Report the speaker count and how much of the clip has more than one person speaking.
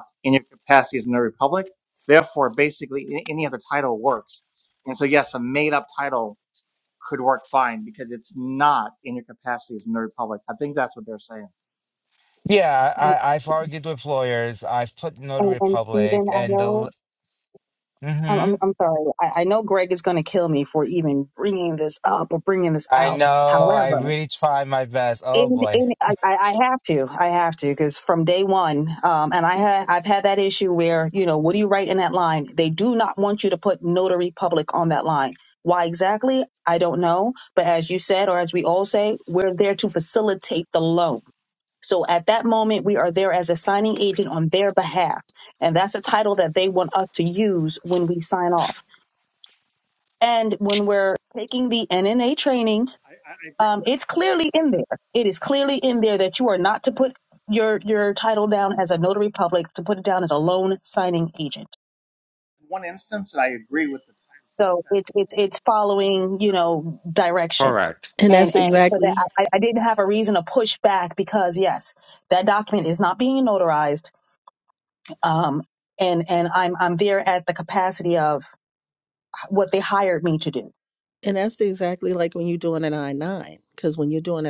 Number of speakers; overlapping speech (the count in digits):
4, about 6%